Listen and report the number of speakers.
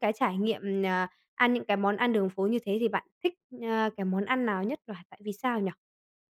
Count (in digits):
1